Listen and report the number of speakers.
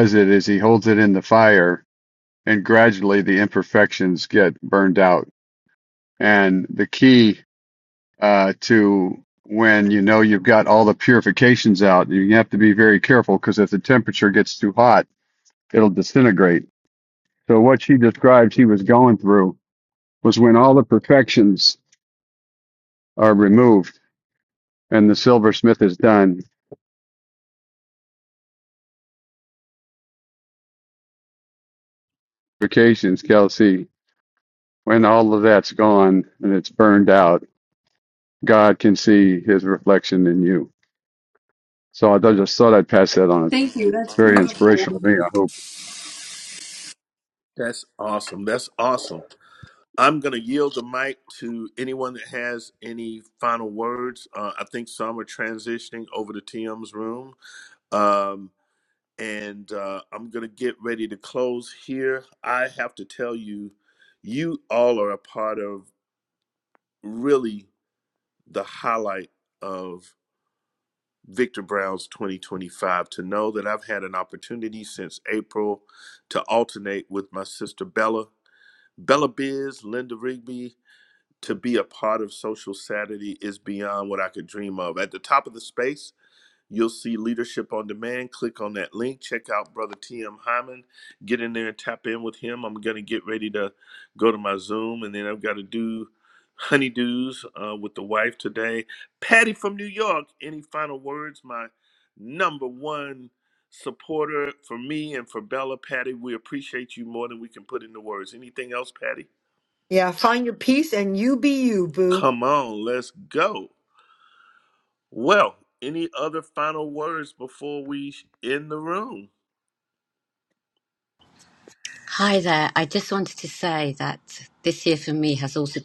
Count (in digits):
5